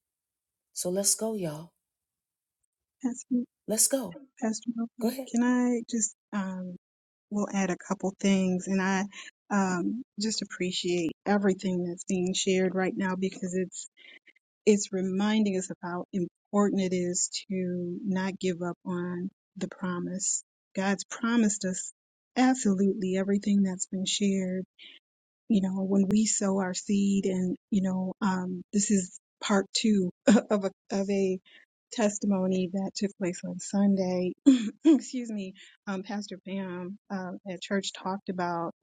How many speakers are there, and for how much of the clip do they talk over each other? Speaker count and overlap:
two, about 1%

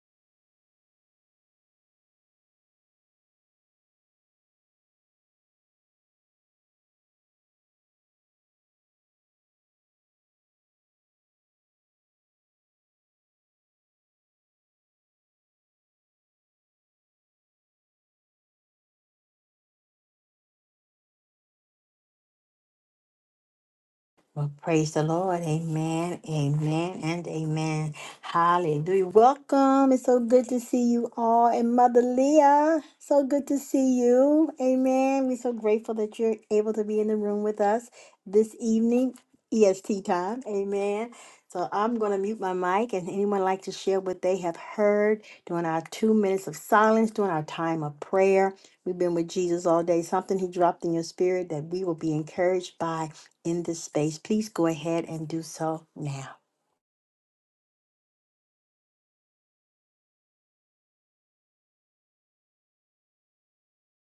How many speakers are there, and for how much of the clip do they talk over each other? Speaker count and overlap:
one, no overlap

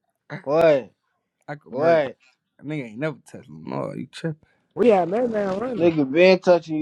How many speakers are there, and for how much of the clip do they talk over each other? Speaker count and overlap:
three, about 6%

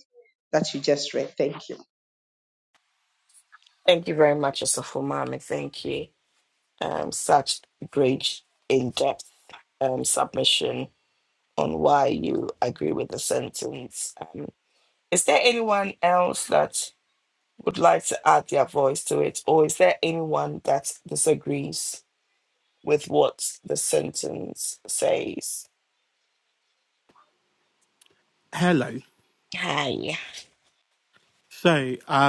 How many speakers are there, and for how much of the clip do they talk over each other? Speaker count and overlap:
three, no overlap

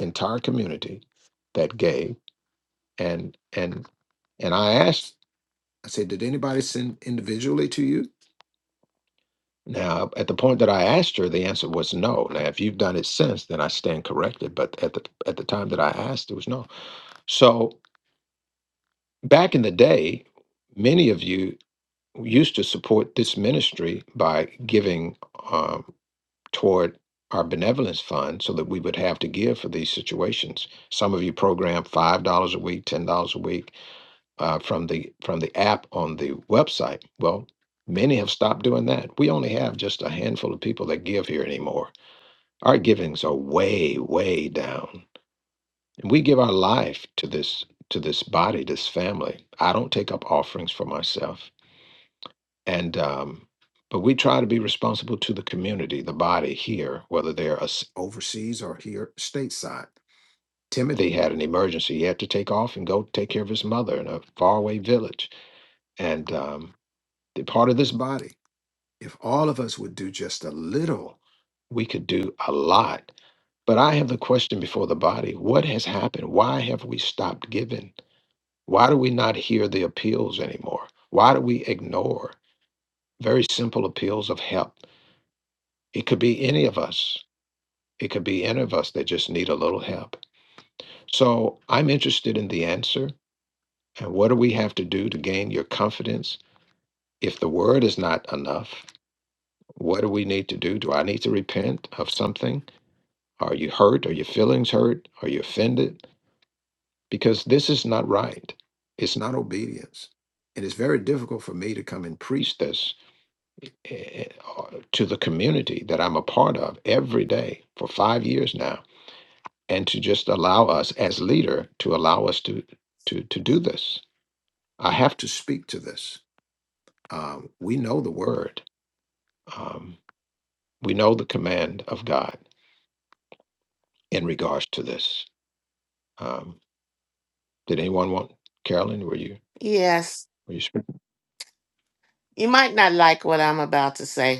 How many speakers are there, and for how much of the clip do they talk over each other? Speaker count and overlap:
two, no overlap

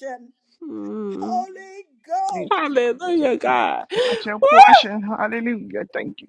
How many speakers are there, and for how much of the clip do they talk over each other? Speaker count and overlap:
three, about 11%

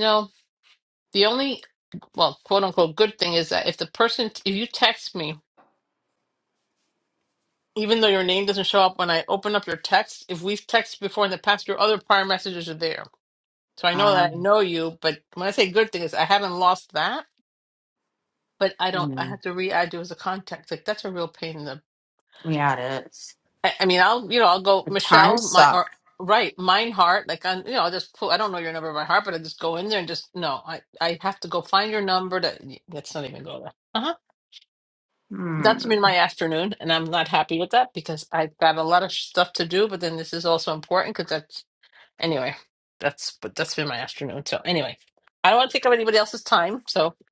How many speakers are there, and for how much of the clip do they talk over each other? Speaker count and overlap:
two, about 5%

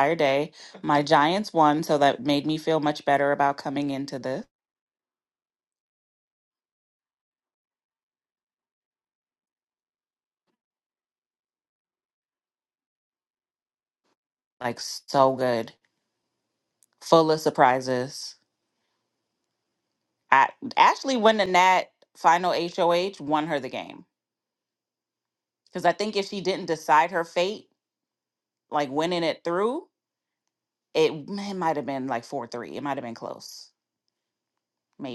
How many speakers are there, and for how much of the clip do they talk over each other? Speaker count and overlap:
one, no overlap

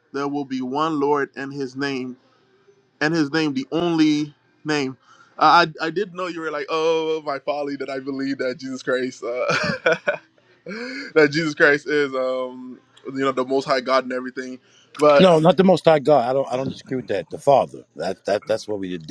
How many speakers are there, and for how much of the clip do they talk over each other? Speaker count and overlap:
two, under 1%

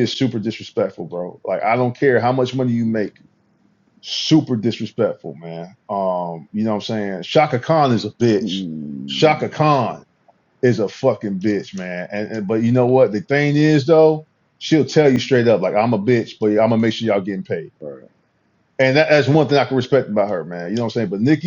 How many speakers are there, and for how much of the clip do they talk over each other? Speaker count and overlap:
two, about 2%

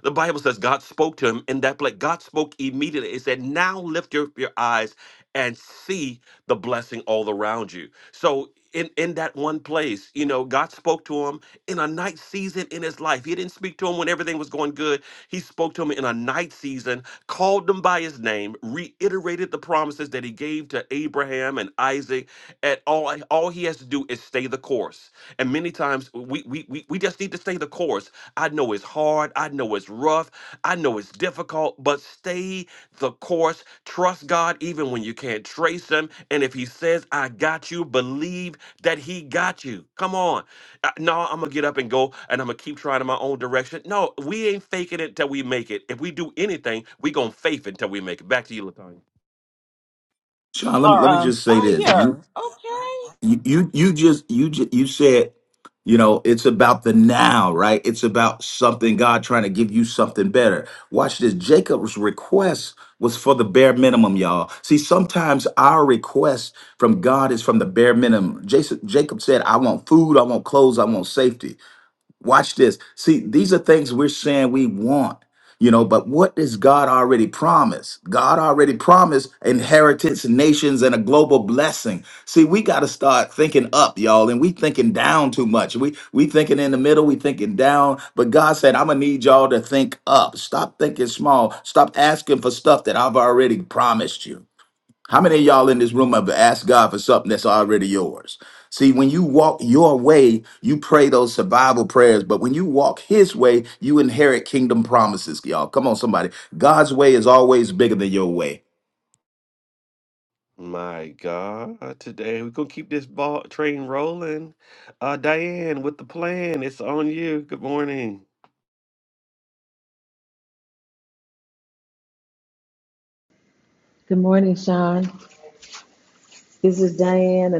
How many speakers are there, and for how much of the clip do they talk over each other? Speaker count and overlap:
four, about 1%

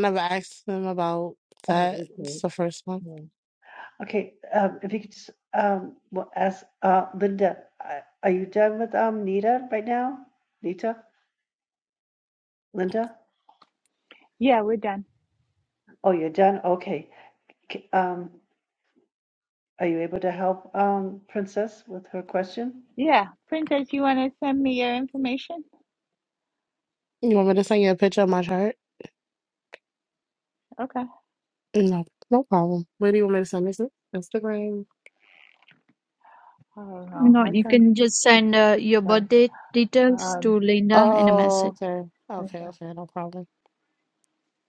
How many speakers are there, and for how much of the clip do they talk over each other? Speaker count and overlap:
four, about 6%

